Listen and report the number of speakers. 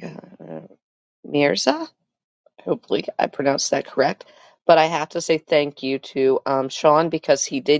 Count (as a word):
one